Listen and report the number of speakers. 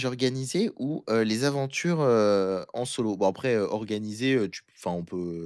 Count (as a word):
one